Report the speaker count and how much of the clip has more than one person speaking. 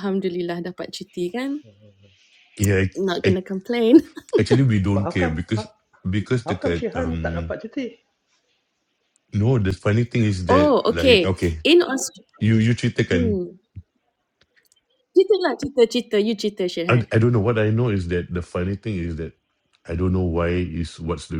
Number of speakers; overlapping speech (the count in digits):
3, about 16%